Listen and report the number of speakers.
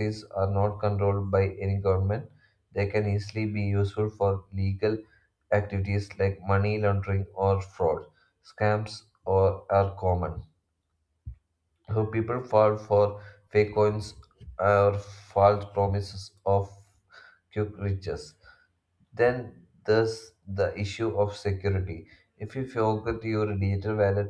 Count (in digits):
1